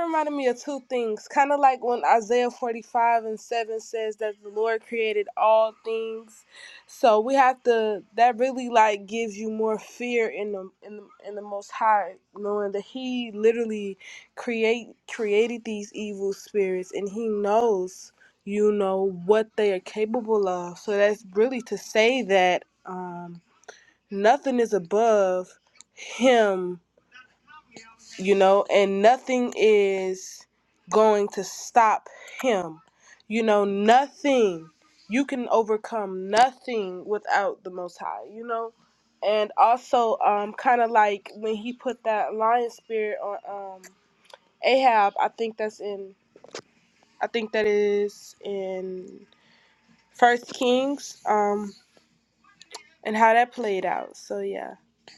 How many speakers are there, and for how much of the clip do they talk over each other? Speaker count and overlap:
one, no overlap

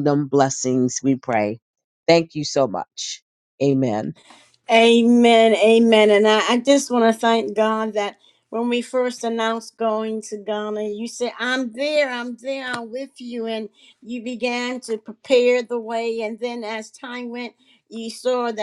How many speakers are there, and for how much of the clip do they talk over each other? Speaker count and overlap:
two, no overlap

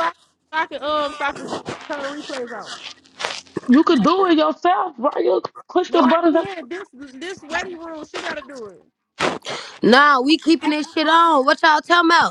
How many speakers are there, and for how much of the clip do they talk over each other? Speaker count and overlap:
three, about 5%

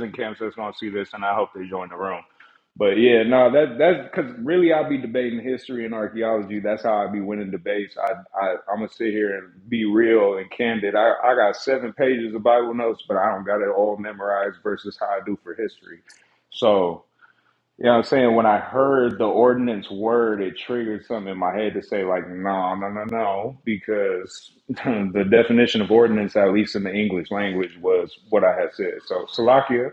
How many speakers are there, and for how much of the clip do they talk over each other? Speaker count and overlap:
one, no overlap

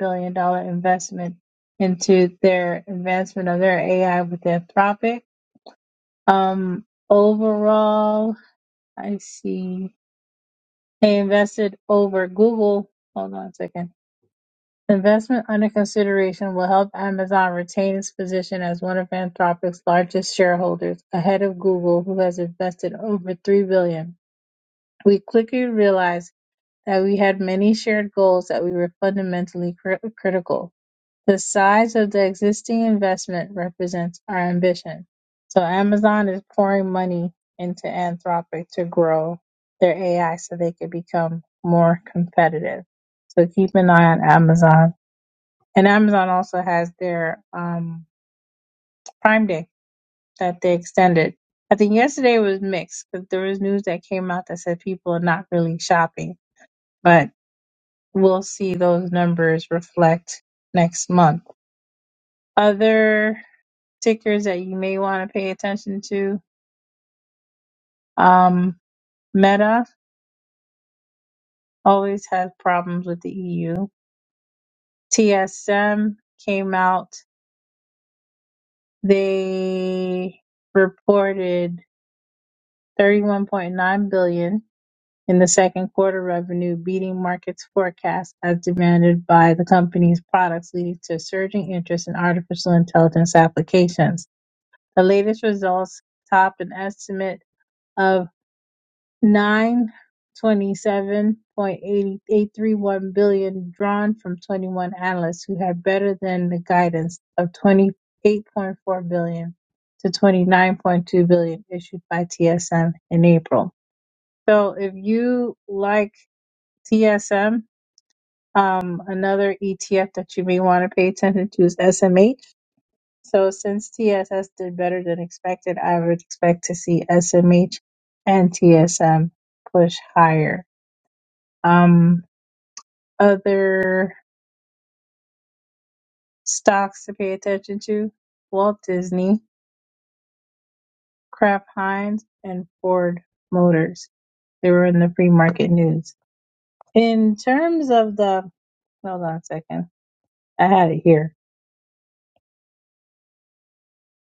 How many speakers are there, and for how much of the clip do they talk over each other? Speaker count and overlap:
one, no overlap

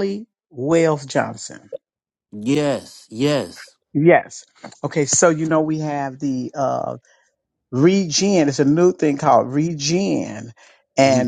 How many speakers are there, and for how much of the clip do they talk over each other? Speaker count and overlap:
two, about 2%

